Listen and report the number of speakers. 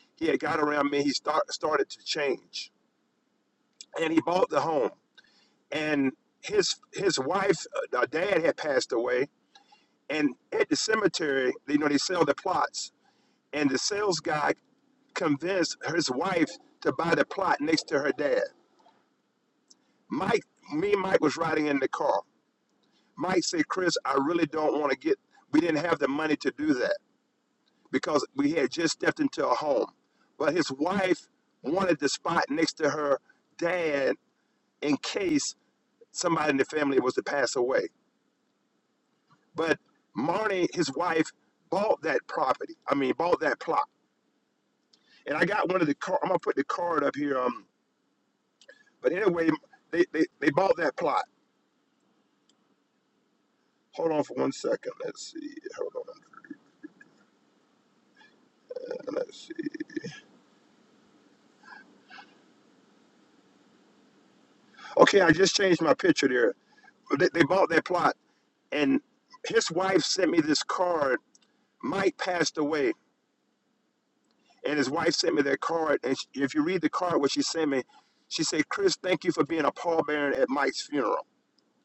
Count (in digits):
1